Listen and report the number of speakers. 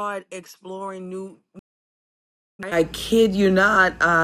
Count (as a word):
one